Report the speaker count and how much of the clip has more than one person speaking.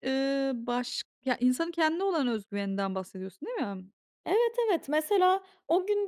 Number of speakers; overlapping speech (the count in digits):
2, no overlap